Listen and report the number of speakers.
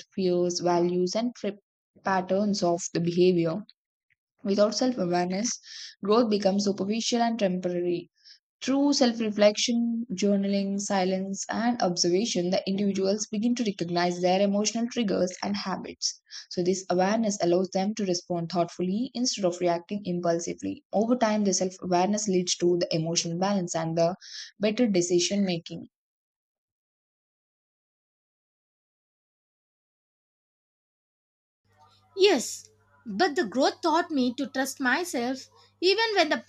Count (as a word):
two